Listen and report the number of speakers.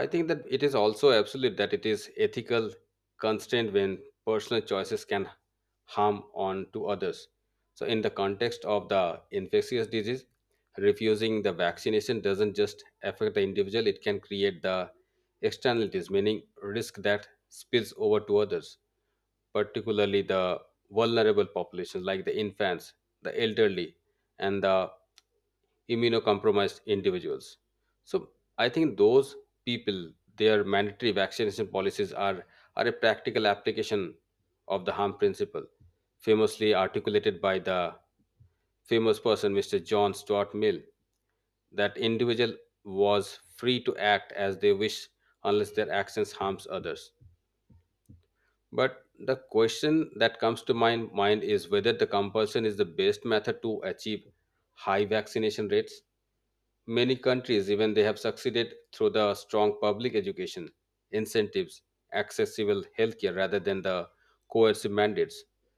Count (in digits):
1